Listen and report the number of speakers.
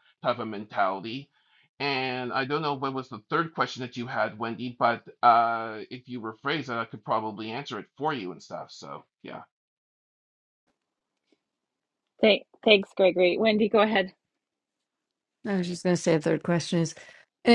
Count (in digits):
3